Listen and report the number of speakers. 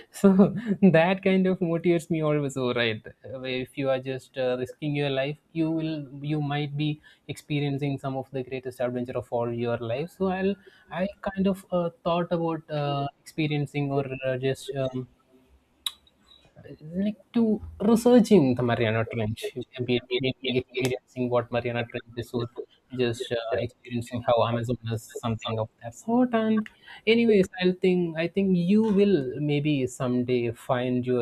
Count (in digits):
1